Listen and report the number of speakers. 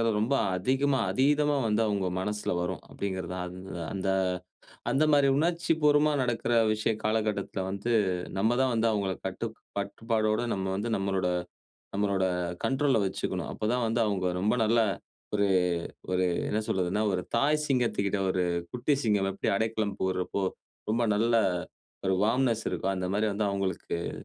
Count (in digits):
1